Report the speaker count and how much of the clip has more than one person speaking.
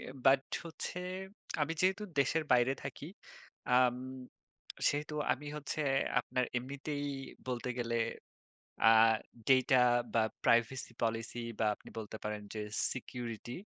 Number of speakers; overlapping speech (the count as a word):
one, no overlap